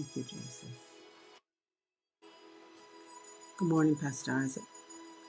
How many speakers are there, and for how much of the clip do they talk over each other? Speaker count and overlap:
one, no overlap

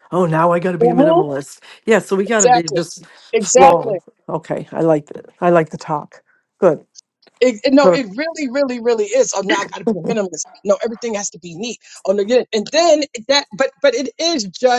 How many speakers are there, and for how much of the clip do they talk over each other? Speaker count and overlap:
two, about 10%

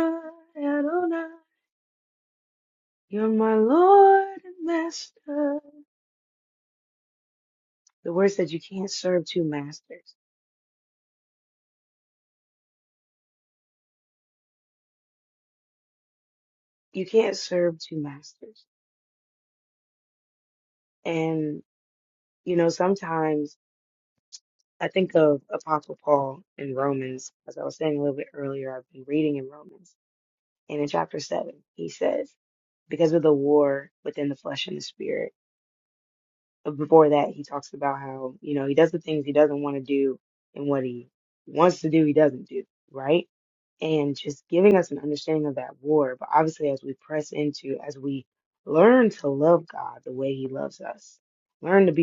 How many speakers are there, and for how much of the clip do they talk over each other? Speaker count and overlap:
one, no overlap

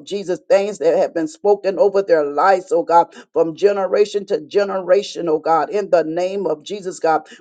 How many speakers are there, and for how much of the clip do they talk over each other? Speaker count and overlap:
one, no overlap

